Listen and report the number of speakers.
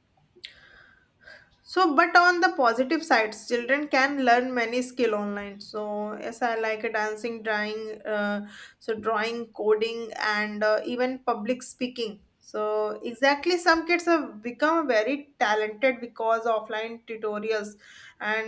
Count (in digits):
1